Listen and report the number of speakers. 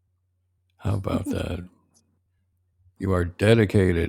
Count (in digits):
1